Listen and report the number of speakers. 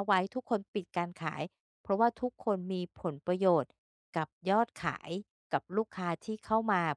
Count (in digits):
1